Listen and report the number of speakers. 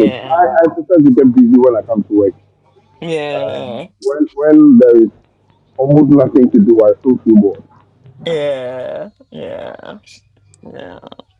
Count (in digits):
2